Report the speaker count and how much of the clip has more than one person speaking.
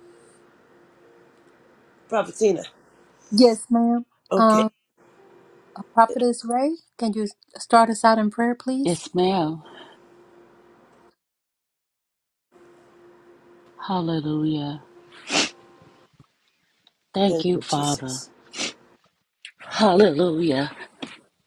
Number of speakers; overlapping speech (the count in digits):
3, about 5%